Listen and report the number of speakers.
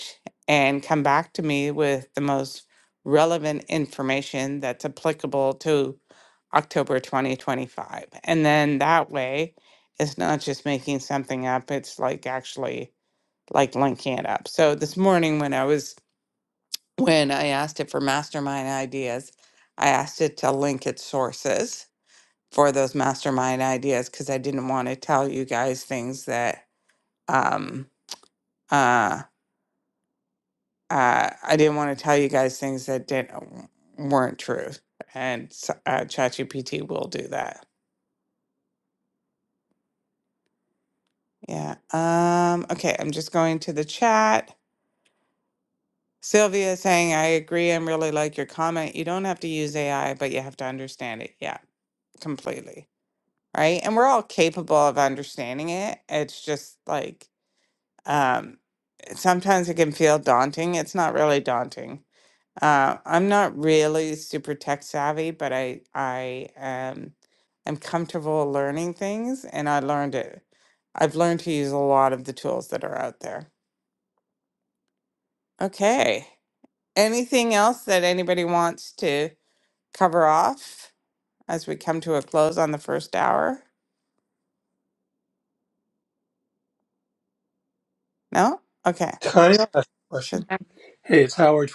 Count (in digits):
2